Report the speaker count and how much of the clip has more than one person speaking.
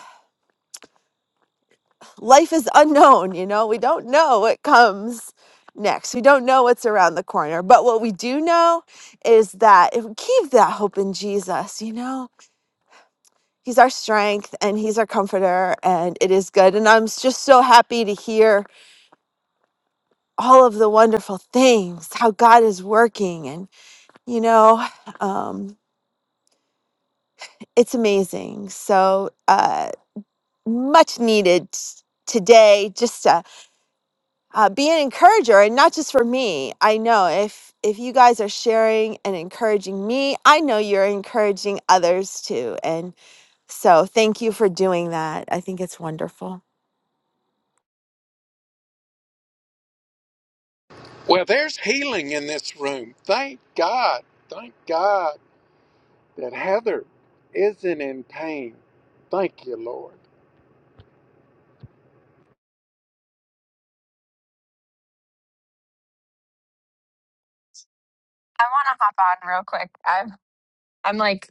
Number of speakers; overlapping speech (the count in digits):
3, no overlap